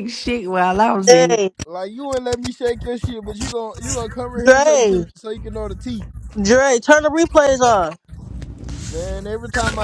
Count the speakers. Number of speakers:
3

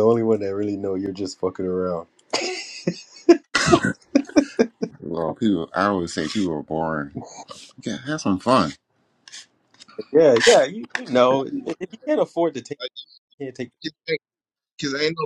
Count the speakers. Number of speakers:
3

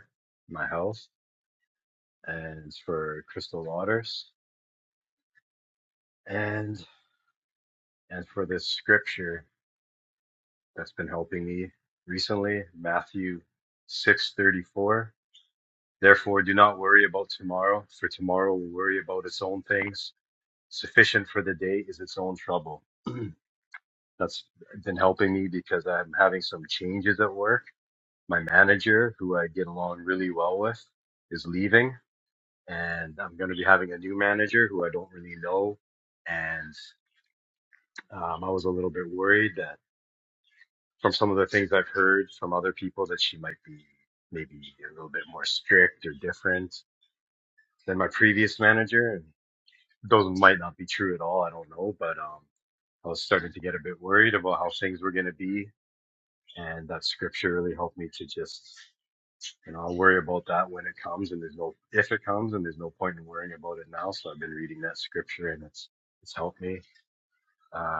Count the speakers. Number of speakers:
1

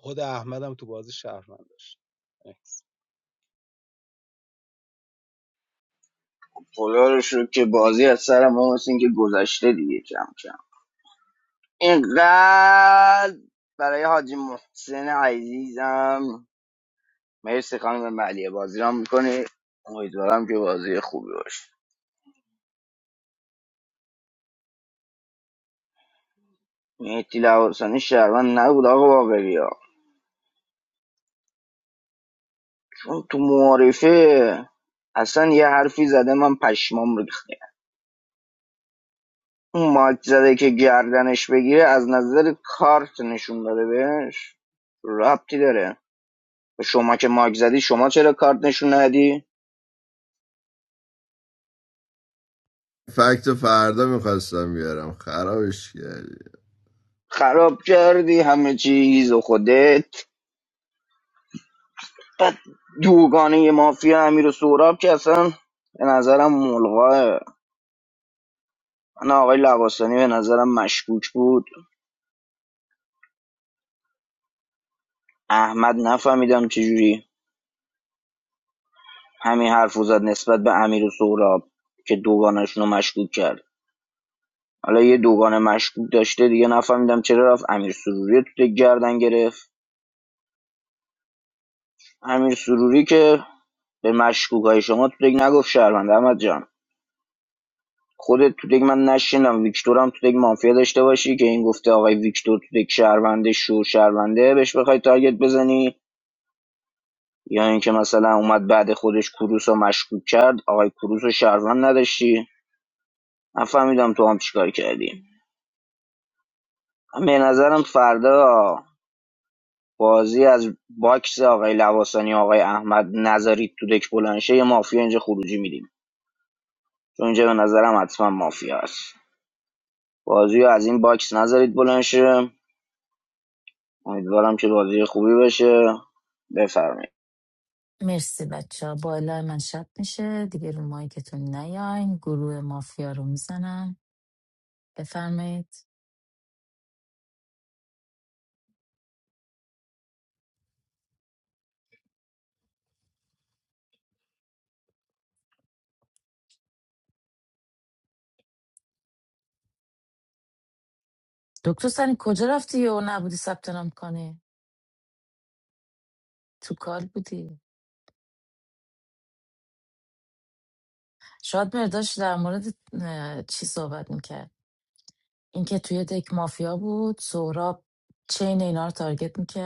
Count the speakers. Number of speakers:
4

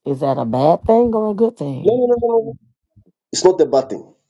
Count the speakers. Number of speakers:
2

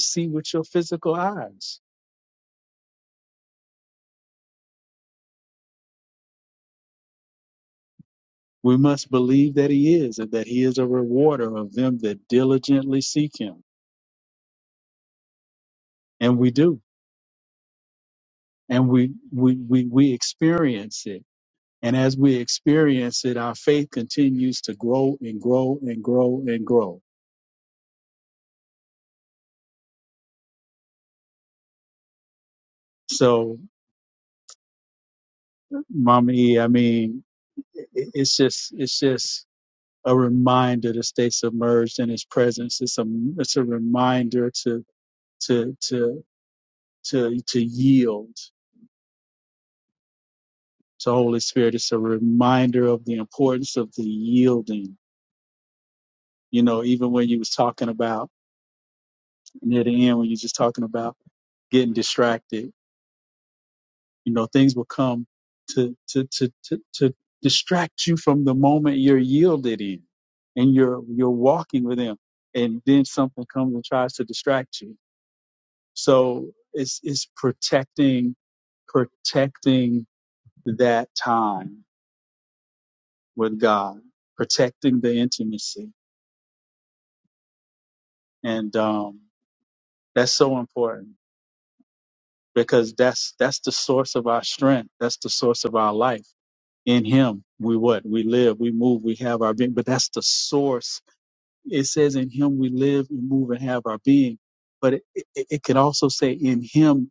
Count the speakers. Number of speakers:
1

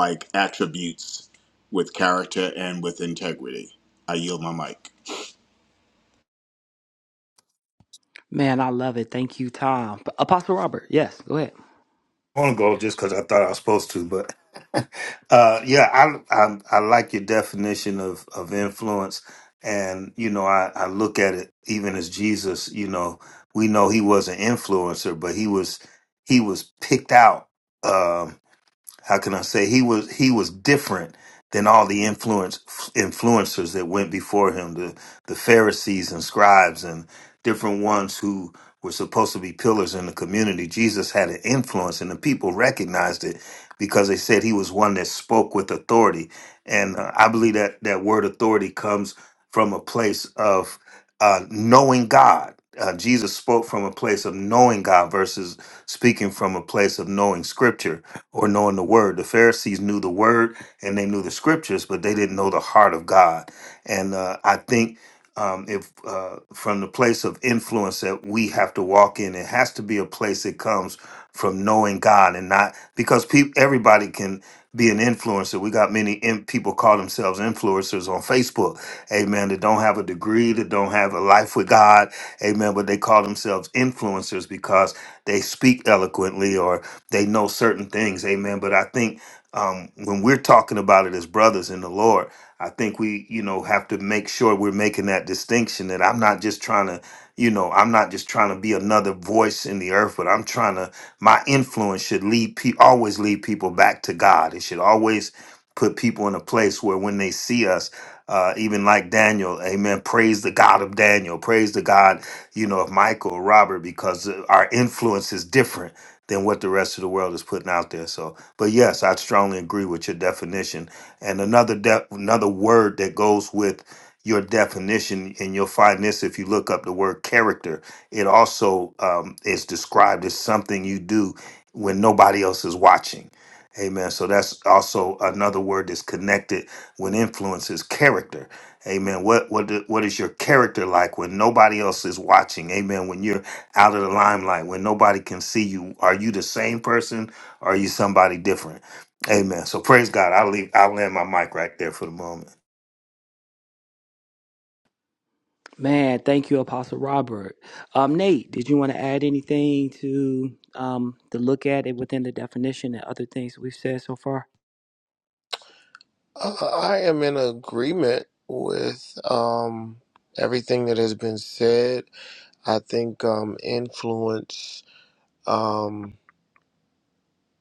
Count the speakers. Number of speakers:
4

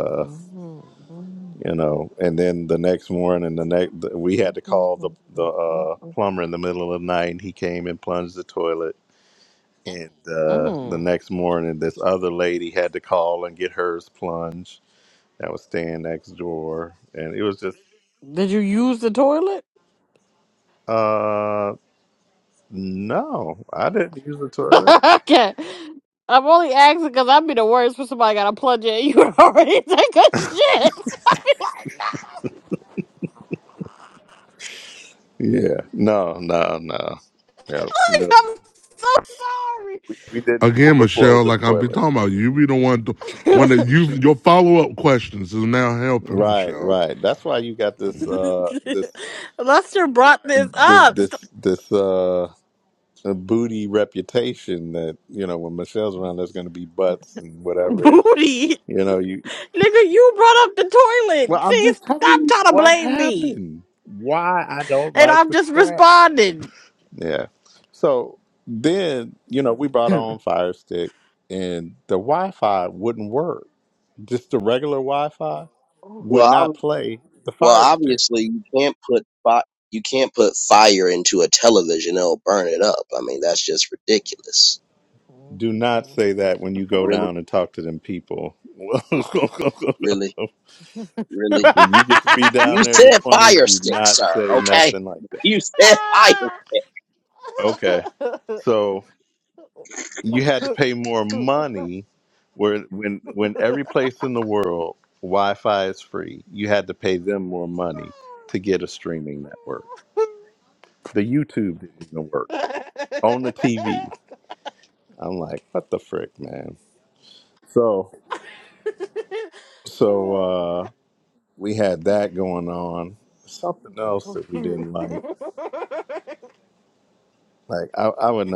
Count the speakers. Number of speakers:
4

